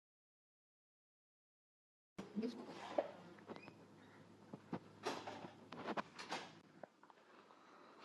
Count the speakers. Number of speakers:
zero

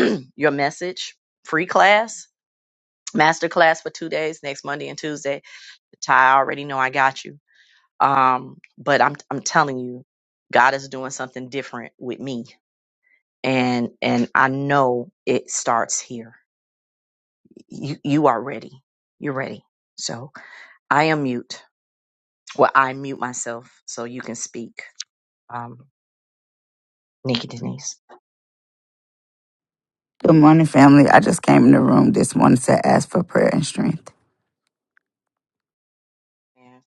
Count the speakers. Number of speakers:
two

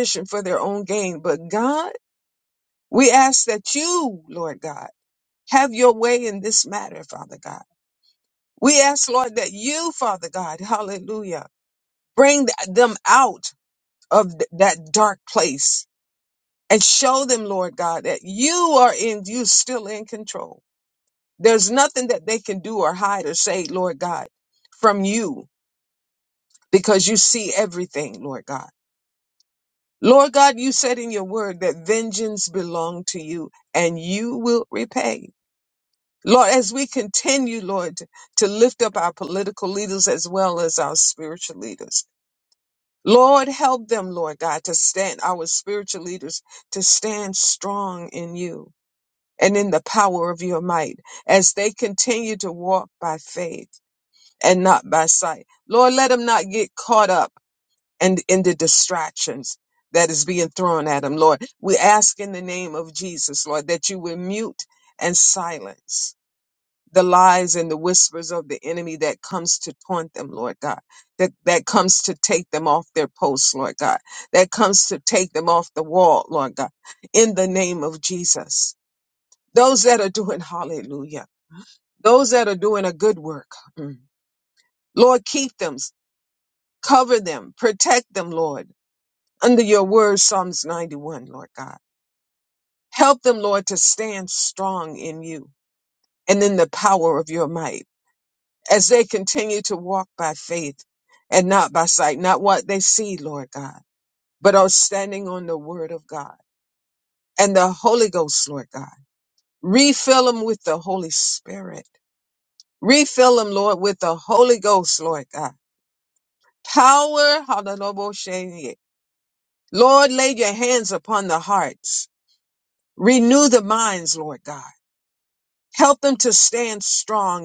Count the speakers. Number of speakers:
one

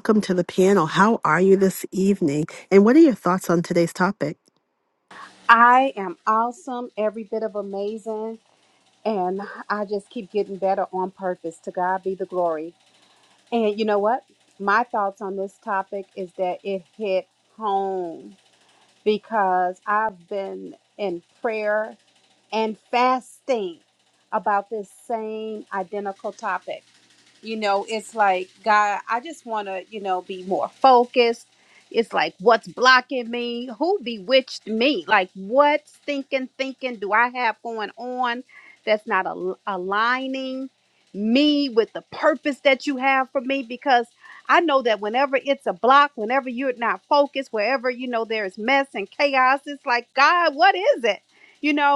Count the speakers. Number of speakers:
two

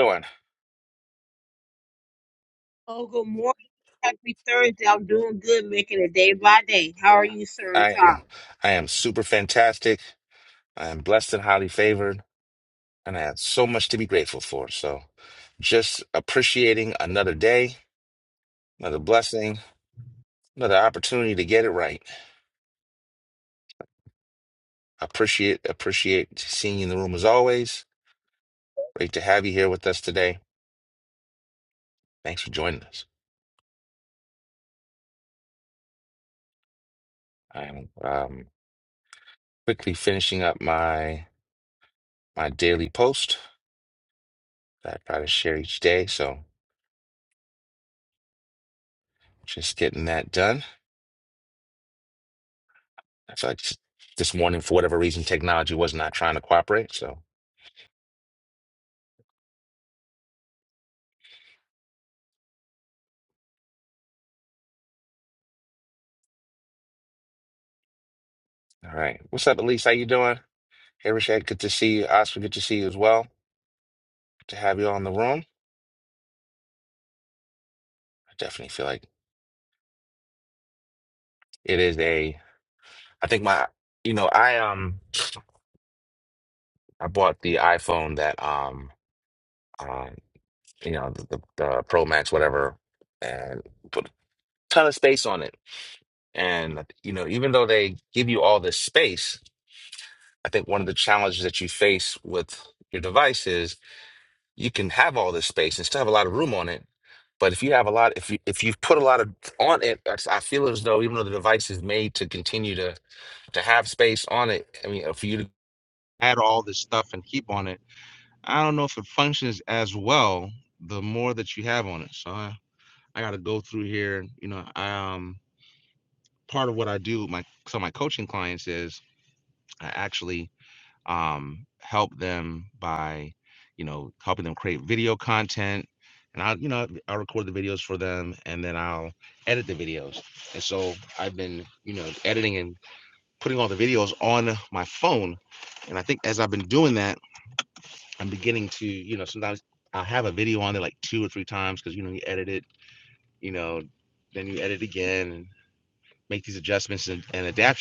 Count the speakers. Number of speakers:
two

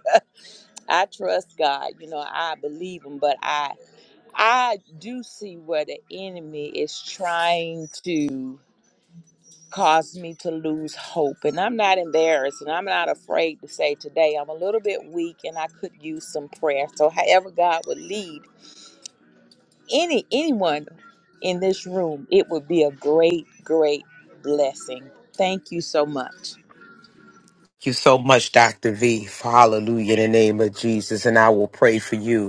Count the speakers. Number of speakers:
two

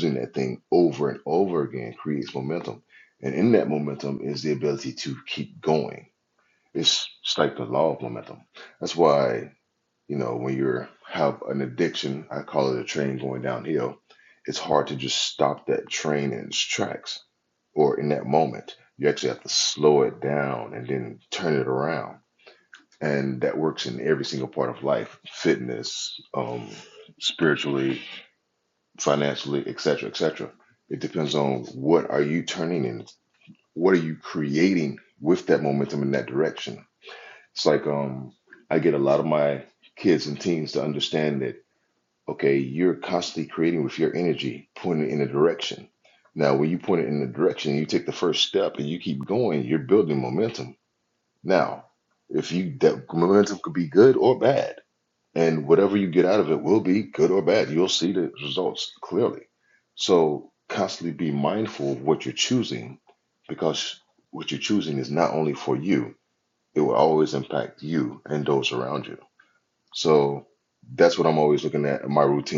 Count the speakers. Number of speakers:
one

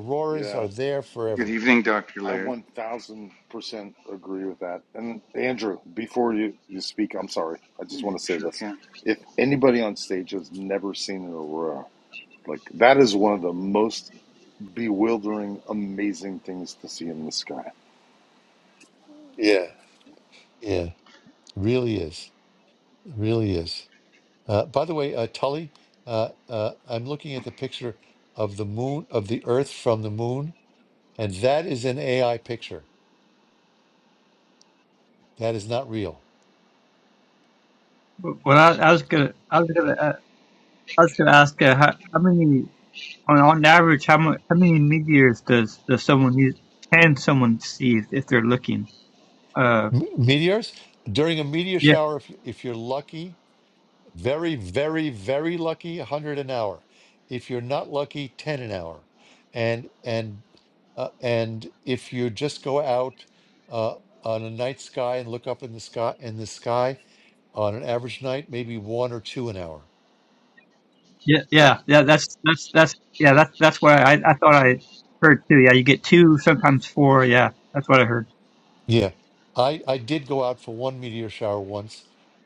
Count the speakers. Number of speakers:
four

